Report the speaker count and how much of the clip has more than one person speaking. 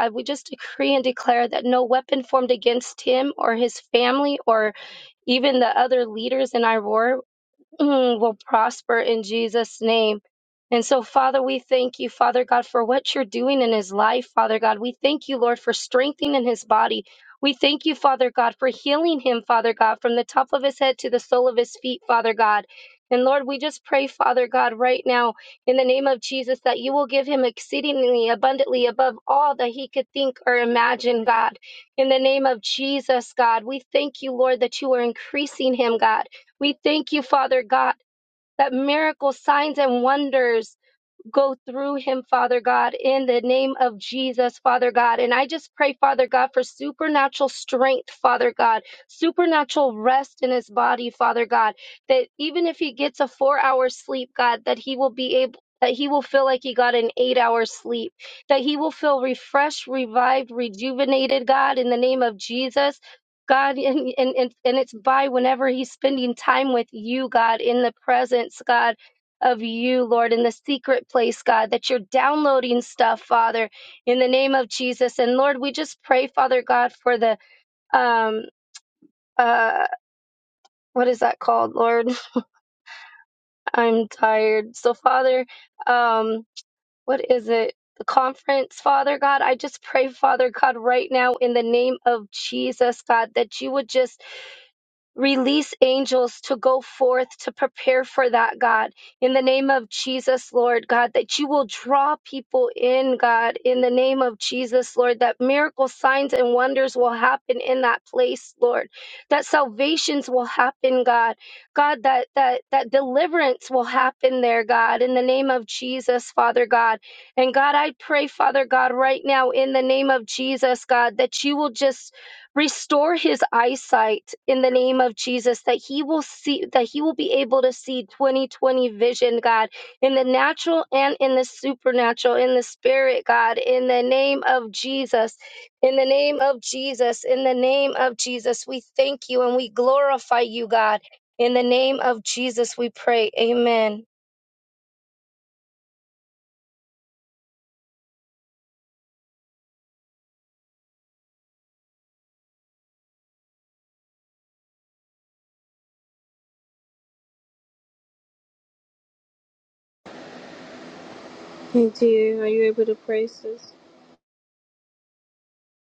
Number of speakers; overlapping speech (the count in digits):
2, no overlap